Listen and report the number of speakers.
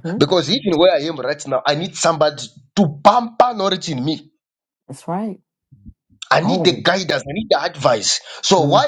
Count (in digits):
2